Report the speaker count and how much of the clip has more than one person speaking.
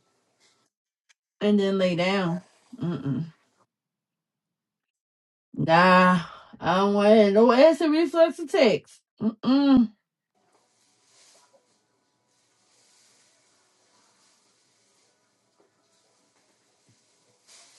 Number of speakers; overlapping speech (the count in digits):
1, no overlap